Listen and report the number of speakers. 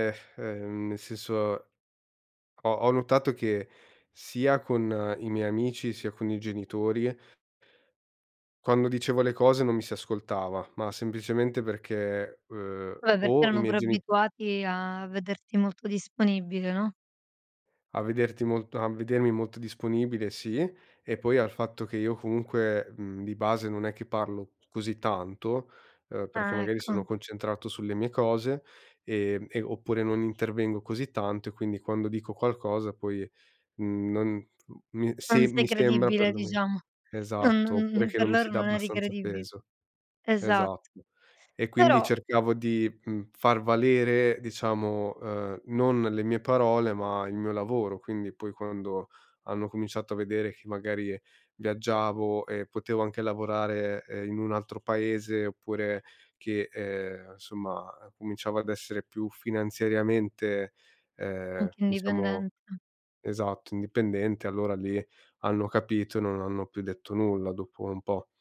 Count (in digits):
2